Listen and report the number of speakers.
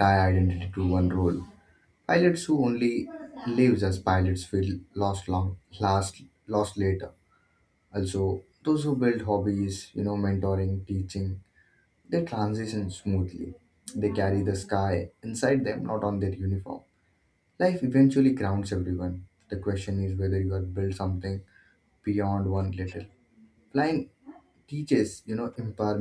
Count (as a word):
one